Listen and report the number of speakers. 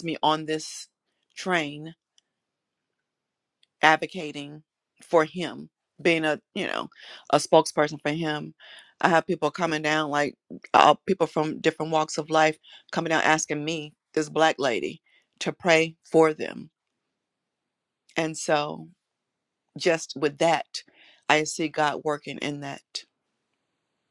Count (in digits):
1